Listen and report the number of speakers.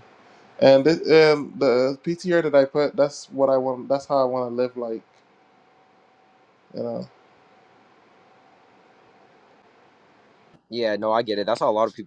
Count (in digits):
2